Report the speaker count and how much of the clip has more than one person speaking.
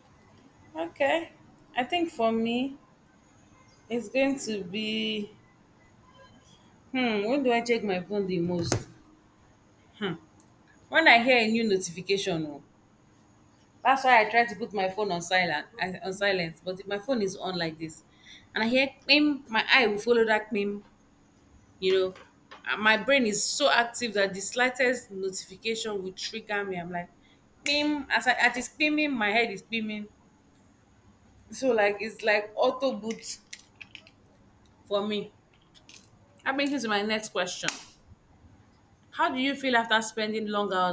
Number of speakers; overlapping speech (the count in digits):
1, no overlap